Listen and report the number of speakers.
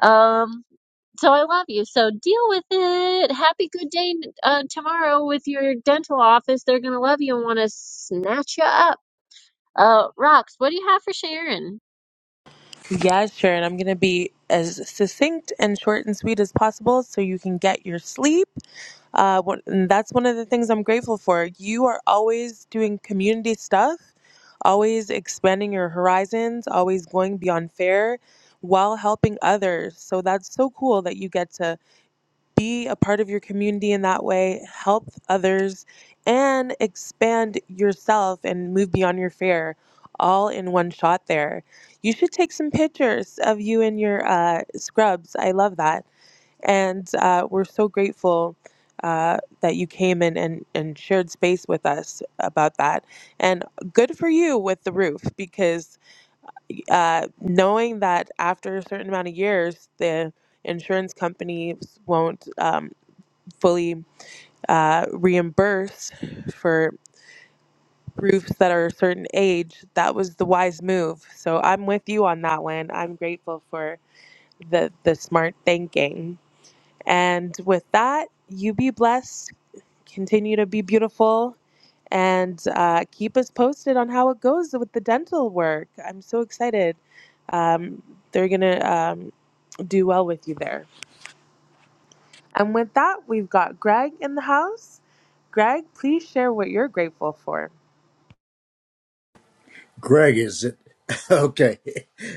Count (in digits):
3